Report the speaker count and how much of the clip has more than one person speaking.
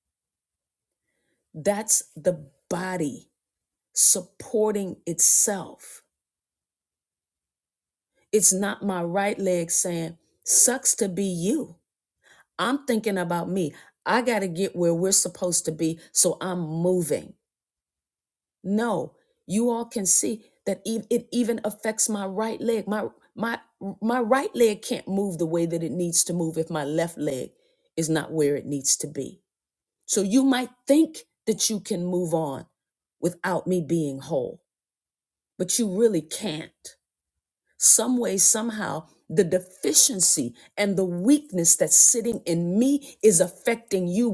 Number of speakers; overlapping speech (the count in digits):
1, no overlap